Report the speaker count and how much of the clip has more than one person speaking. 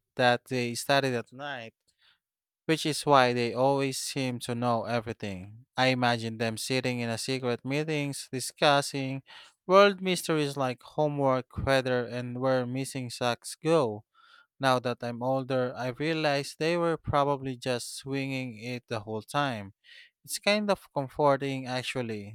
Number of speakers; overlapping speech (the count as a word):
one, no overlap